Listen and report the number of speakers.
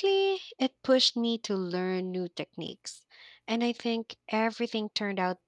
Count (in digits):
1